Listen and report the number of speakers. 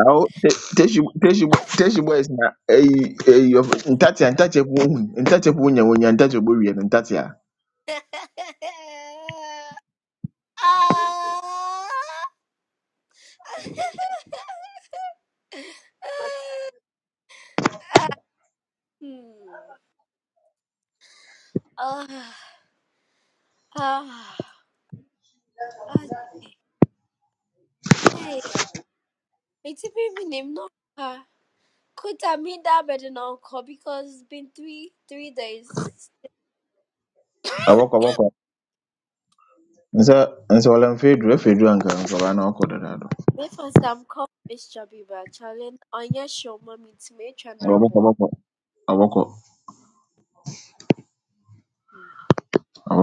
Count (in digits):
2